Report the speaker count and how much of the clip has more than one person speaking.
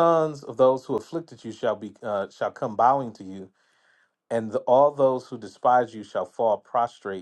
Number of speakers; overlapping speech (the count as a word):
one, no overlap